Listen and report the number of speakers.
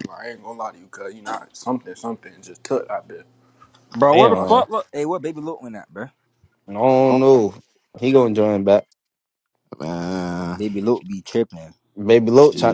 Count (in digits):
4